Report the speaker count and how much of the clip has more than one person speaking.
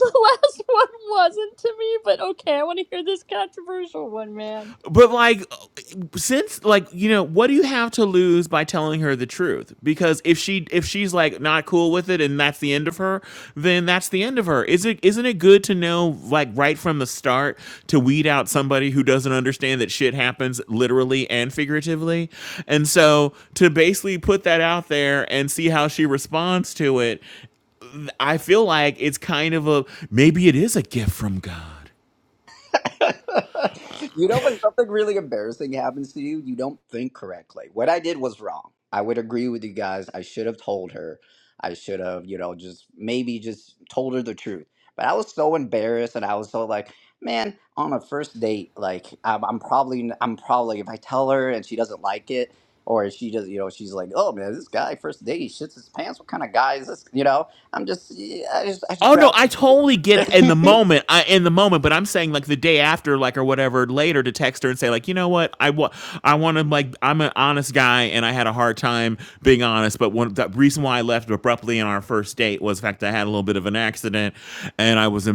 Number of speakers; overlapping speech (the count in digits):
3, under 1%